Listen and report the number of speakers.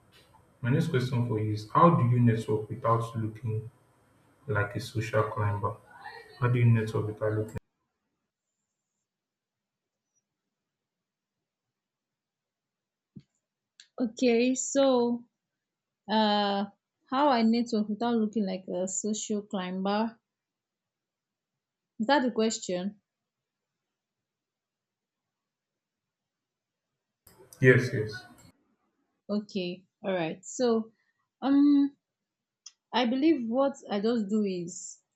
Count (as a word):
two